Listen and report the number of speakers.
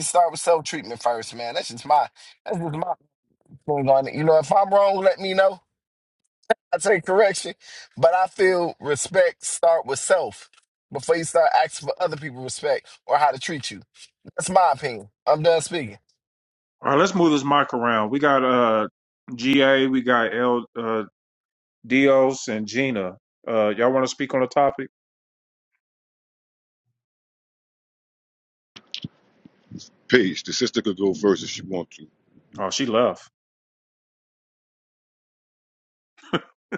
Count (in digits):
3